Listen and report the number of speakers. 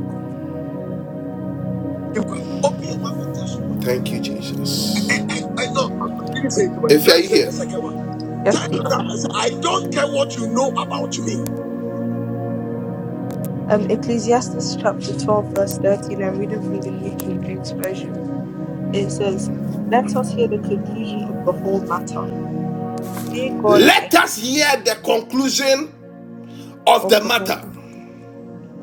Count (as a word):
three